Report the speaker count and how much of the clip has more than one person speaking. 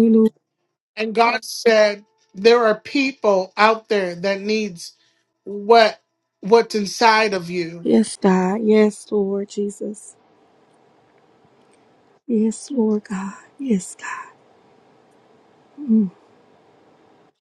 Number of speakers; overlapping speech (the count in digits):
2, no overlap